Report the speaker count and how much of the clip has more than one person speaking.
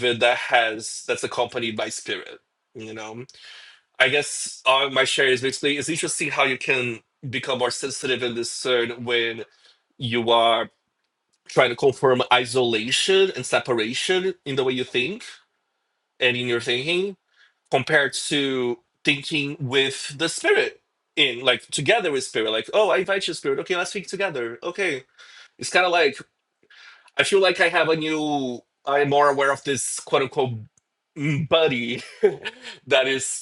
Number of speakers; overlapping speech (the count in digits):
1, no overlap